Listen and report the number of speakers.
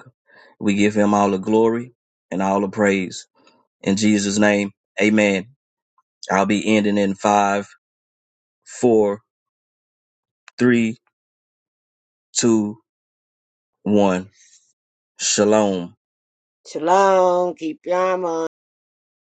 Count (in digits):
2